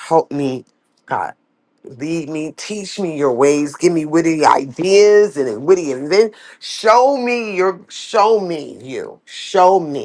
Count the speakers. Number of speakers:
1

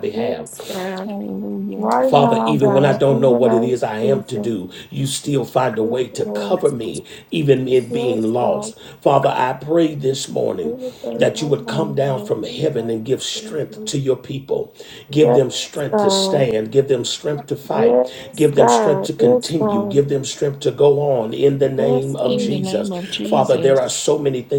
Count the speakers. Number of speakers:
3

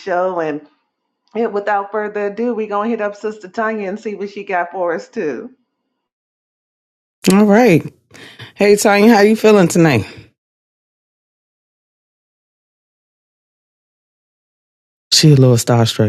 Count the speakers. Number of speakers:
2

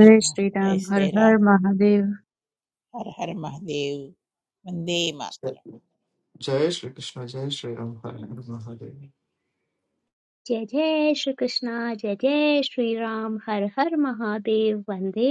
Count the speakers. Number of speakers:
4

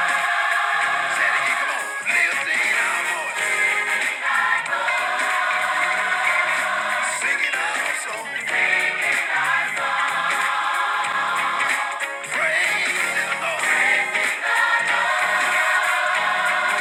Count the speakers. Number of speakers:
0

